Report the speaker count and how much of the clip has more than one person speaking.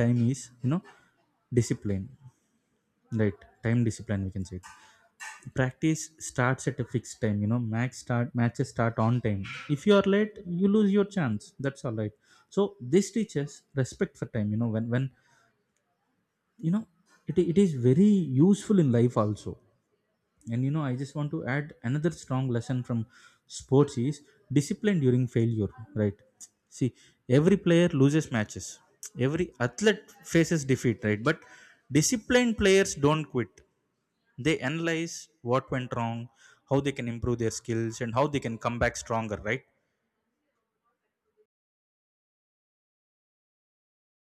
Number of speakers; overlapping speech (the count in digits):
1, no overlap